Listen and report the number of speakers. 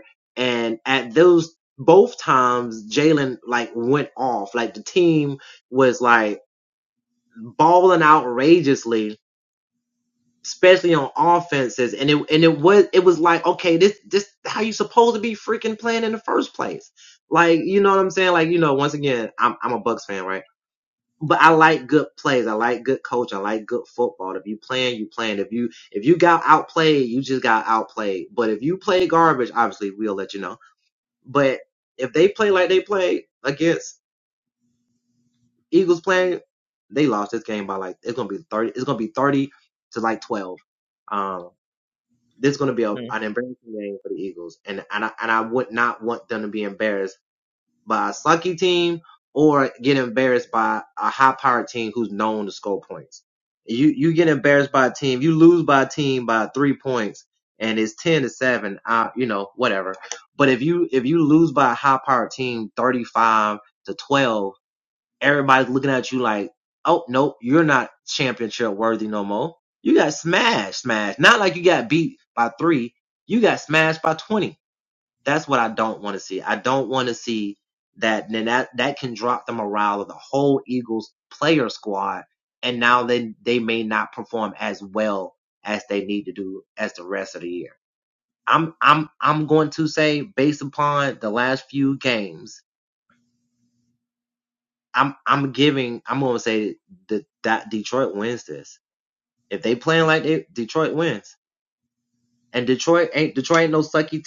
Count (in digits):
1